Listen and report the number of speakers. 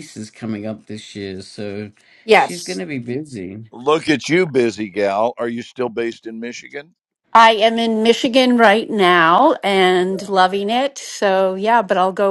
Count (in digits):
3